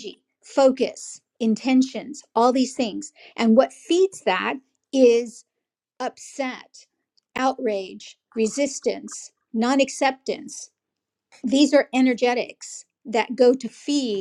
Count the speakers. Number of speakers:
1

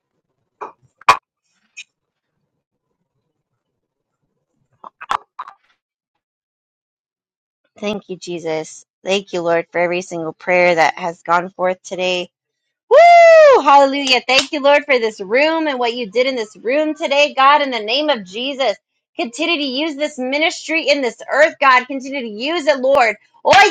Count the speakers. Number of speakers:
1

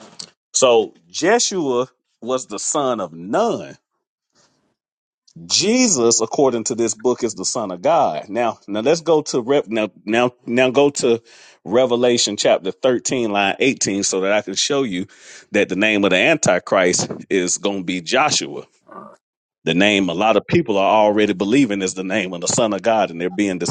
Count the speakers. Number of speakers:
1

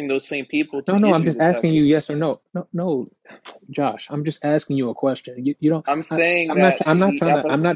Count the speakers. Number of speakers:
2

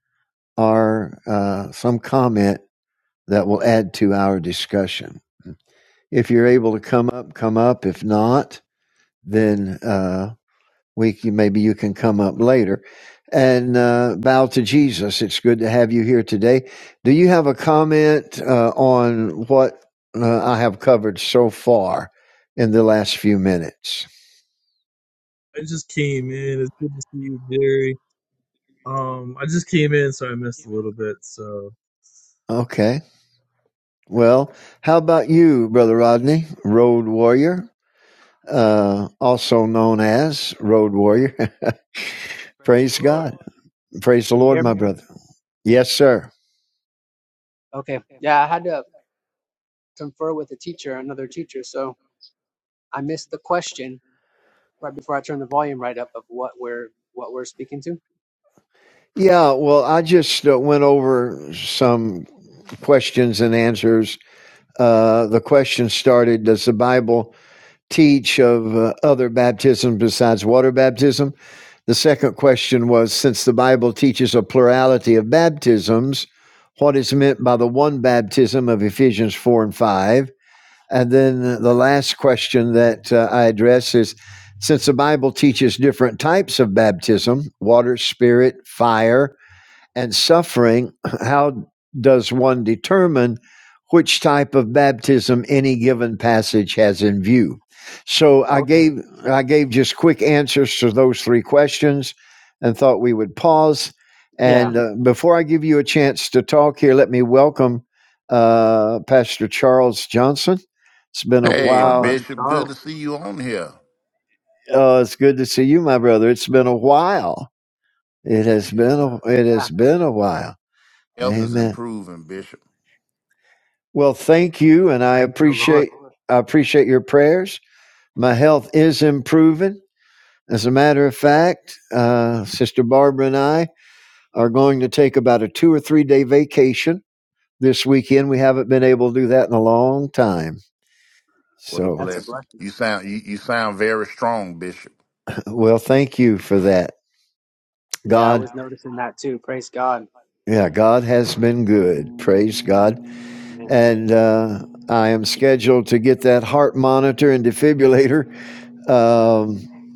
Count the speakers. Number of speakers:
4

